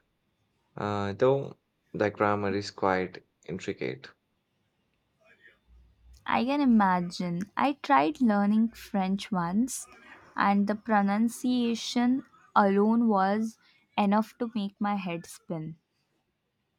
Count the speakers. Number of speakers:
two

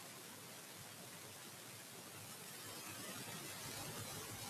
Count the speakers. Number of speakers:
zero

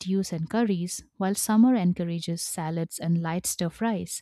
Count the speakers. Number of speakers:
one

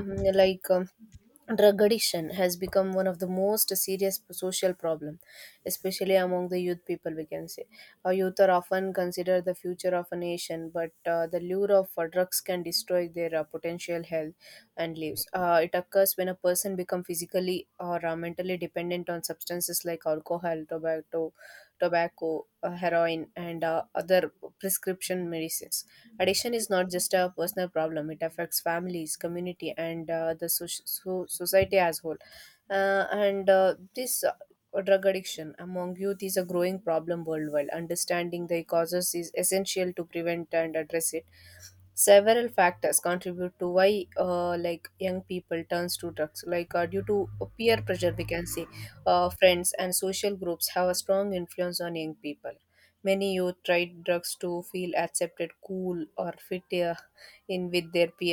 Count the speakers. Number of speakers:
one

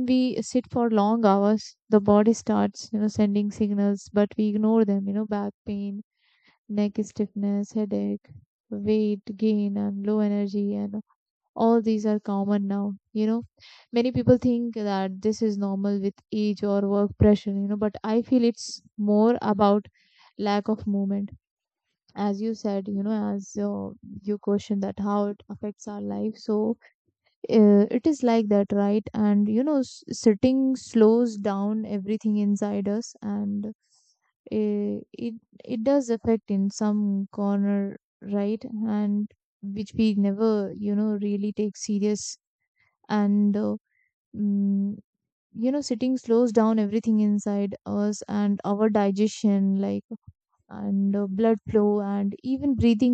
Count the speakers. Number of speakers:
one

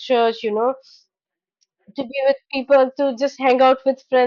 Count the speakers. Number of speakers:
one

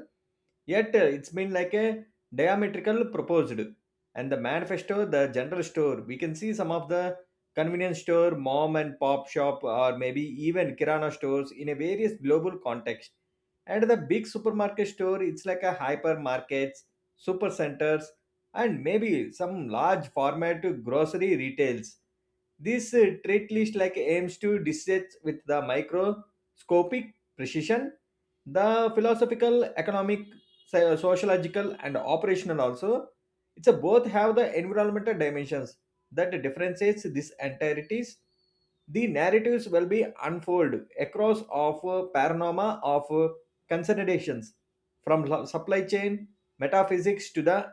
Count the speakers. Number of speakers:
one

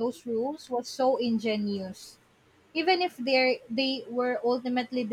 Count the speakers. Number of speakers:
one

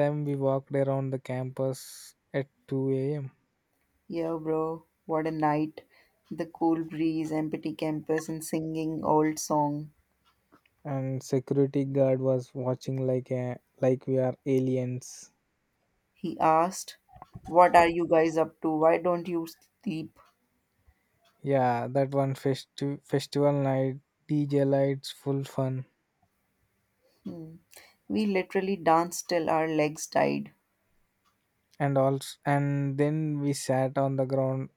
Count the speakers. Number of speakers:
two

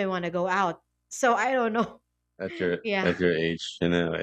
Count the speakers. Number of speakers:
two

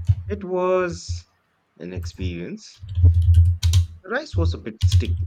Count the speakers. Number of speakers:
one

